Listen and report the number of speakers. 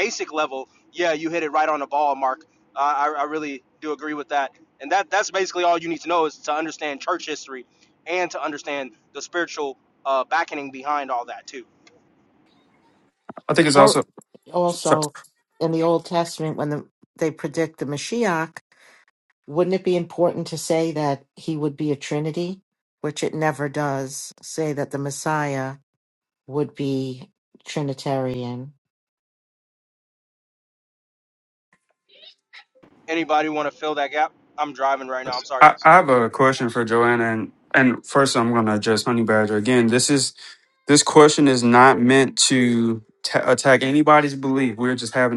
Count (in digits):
3